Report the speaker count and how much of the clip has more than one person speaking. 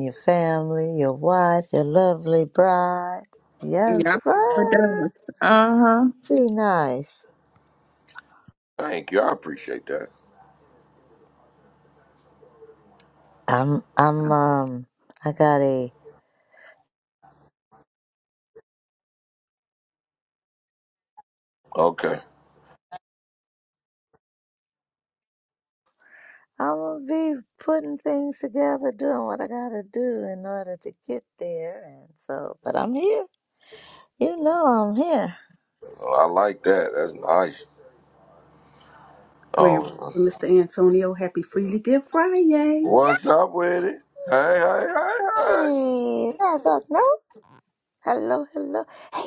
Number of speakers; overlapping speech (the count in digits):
4, about 2%